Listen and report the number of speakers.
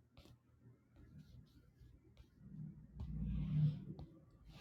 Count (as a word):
zero